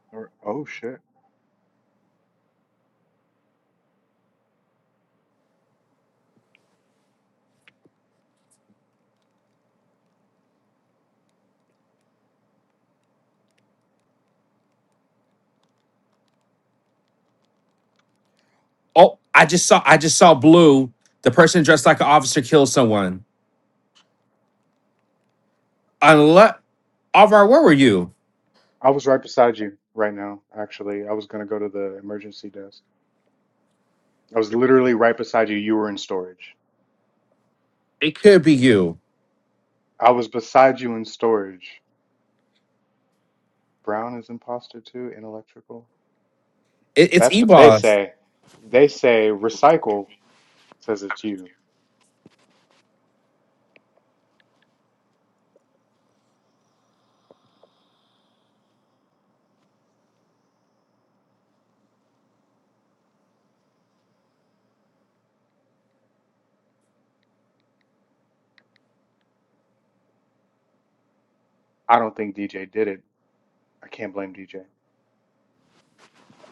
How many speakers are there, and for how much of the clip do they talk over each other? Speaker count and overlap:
2, about 1%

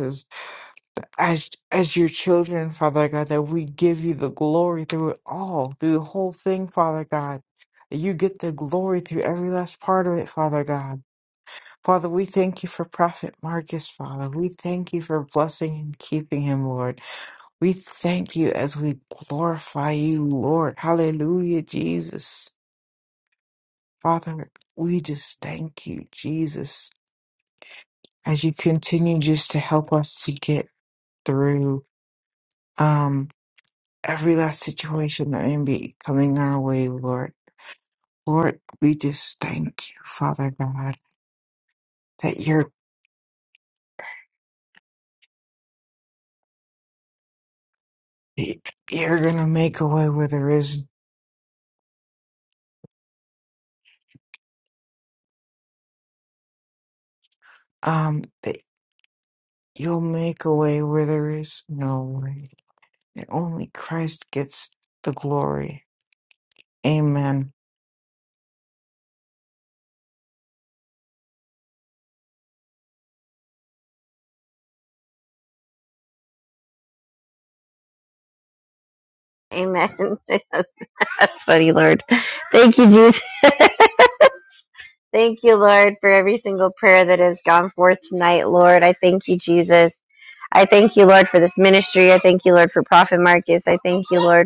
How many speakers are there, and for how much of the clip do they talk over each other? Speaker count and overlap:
2, no overlap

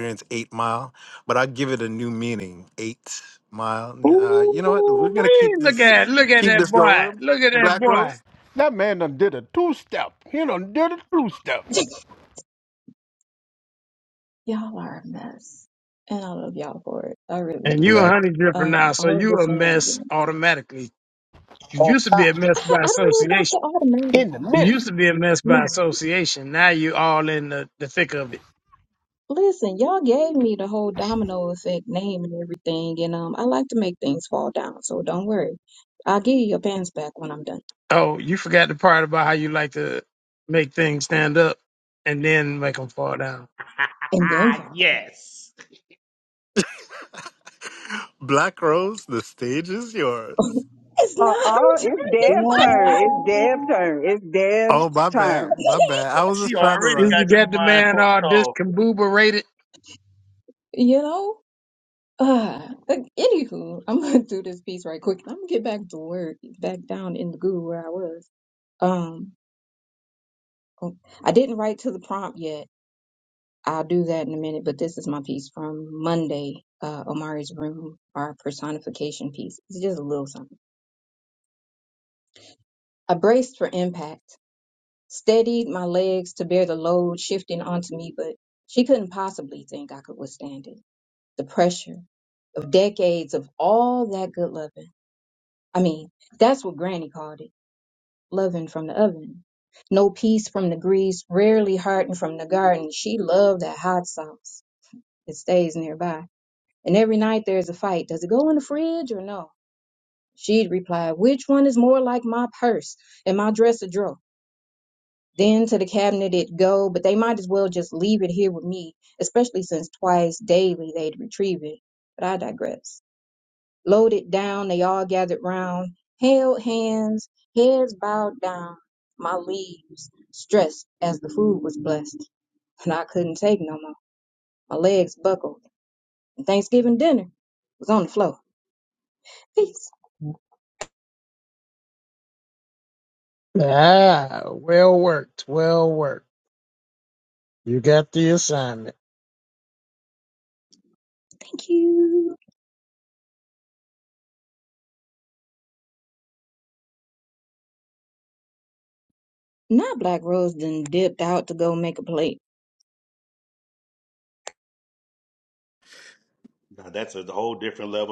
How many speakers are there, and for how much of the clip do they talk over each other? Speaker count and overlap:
6, about 8%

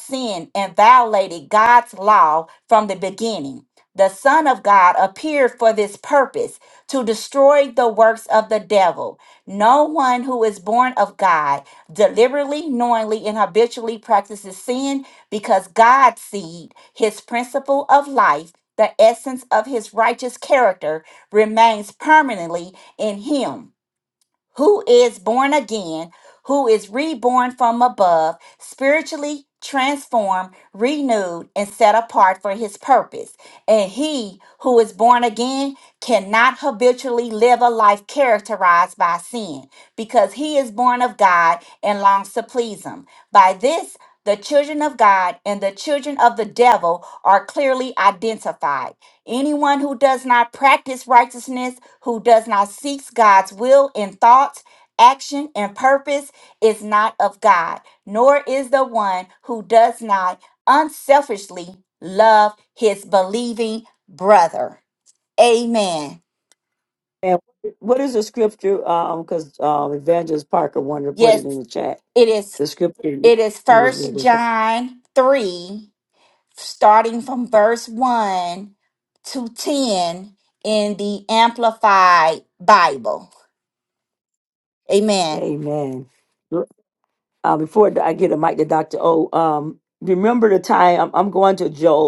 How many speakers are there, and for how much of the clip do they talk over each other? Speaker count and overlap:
2, about 1%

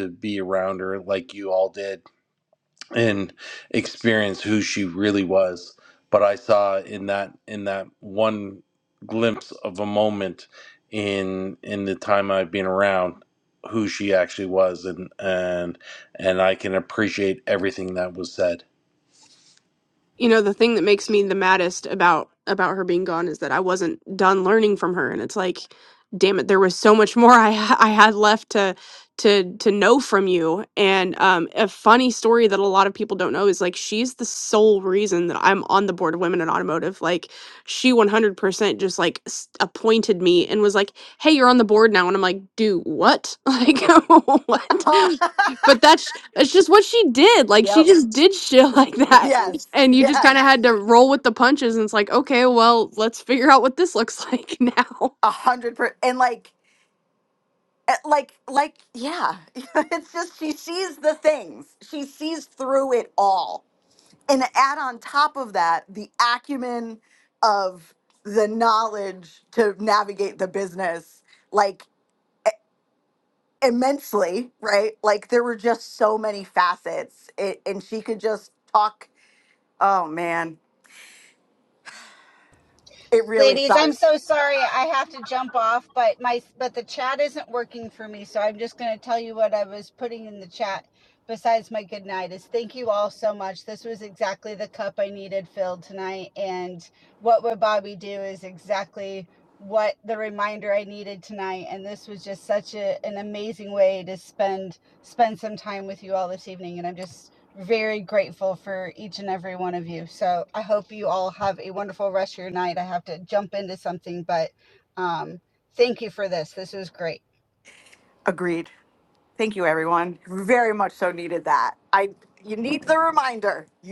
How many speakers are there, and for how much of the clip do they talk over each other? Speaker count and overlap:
4, about 1%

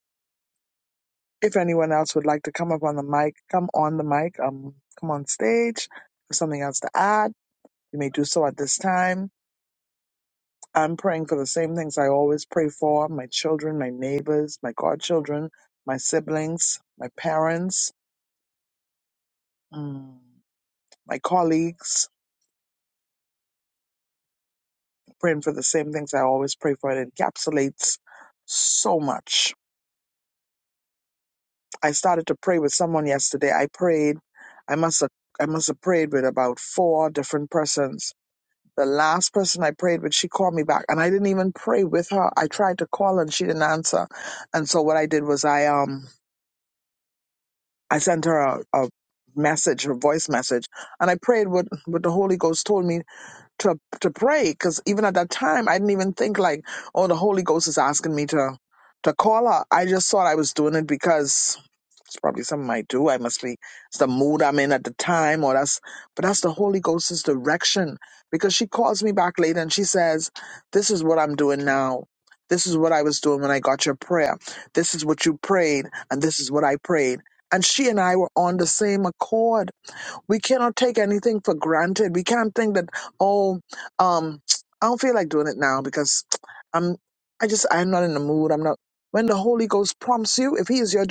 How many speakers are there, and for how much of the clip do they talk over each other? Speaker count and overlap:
1, no overlap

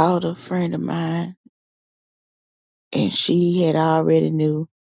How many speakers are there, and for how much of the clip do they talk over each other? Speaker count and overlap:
1, no overlap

